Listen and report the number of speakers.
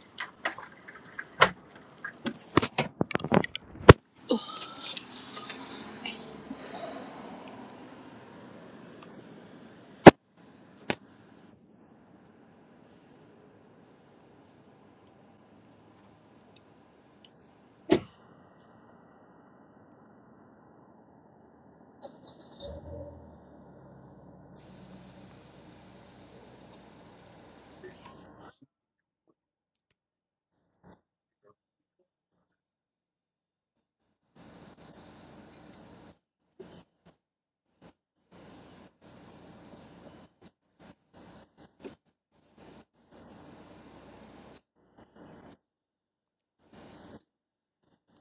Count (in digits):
0